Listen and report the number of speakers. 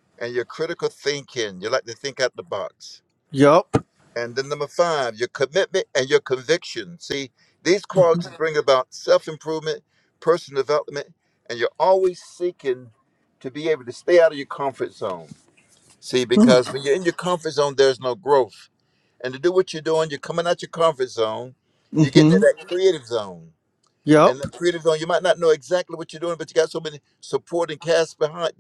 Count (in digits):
2